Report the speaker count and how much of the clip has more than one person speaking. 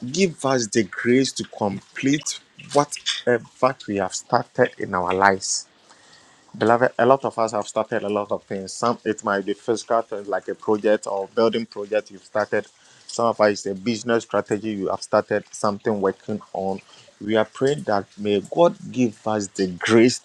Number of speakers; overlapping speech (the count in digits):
1, no overlap